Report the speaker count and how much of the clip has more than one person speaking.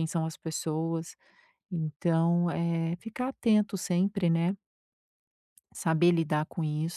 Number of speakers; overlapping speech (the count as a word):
one, no overlap